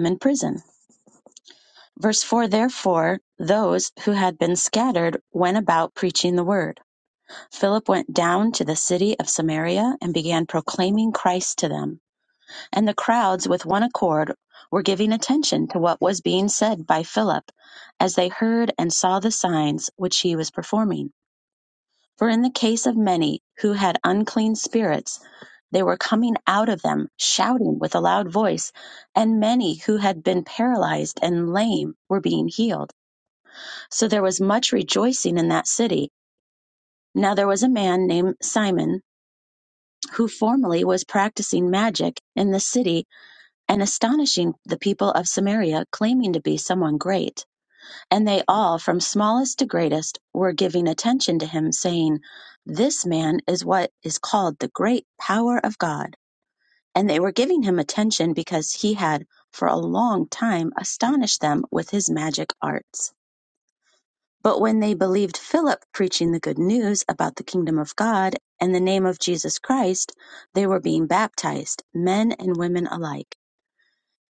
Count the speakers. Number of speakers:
1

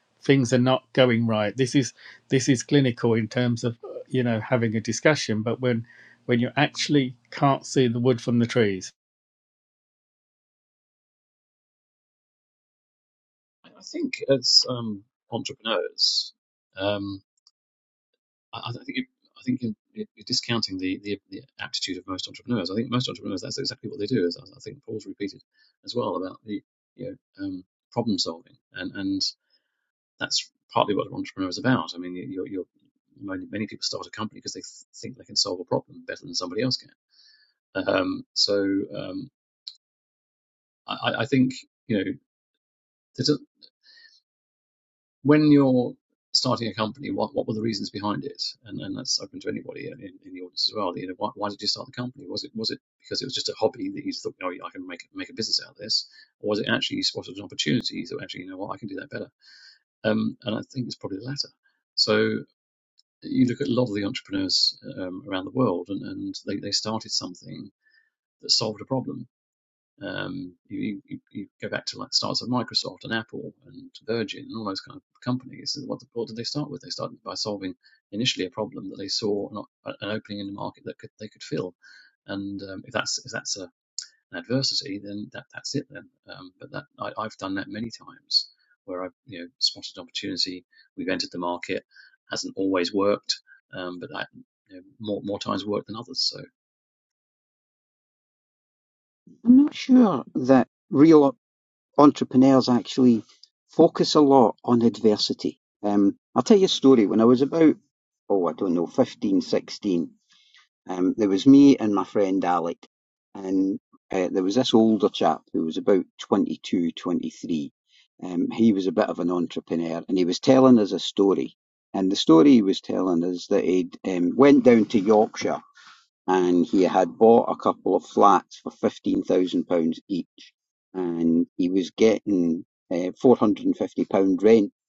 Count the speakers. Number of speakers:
3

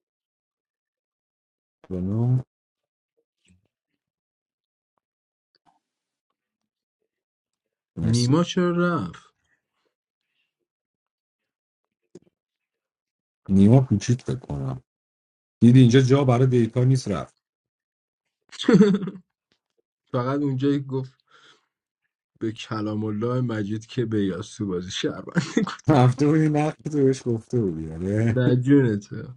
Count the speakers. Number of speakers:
2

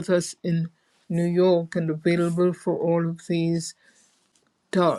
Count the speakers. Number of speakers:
1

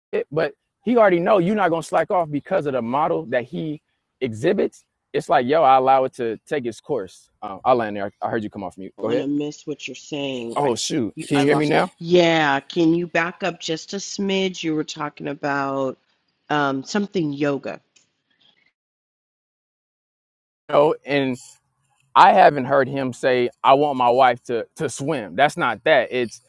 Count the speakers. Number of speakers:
2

